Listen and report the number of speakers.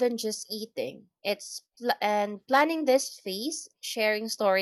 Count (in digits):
1